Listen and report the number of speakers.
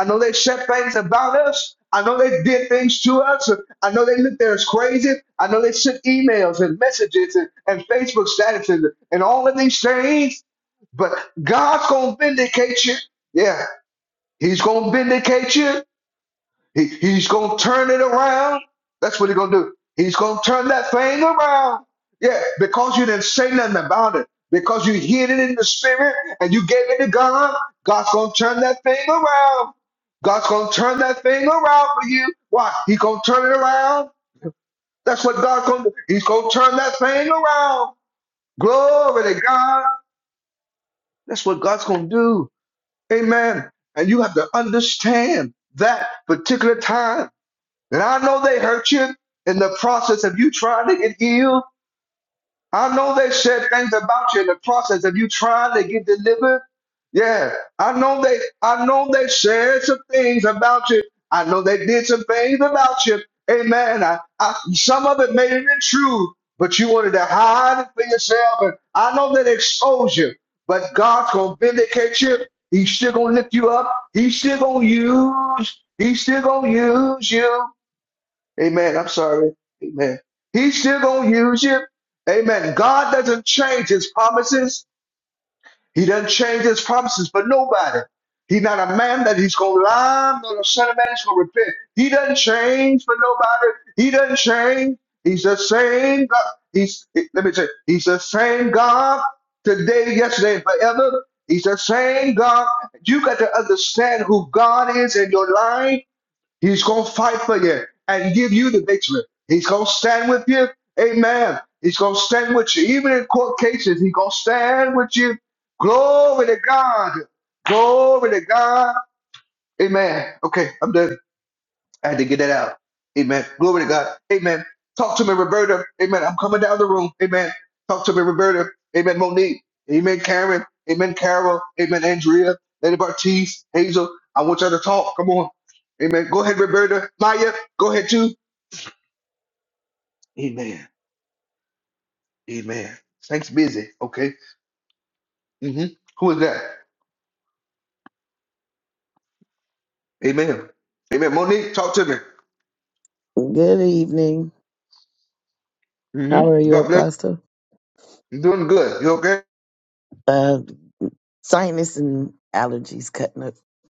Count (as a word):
two